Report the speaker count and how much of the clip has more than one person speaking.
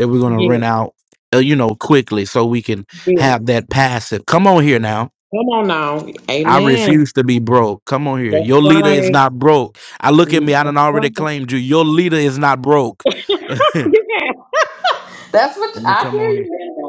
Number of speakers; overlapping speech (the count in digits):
2, about 22%